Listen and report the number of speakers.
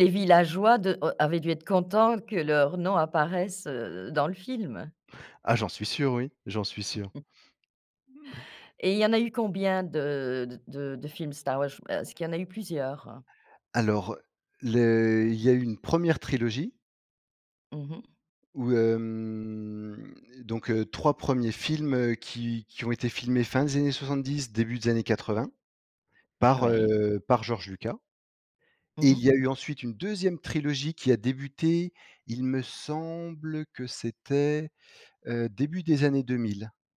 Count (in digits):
2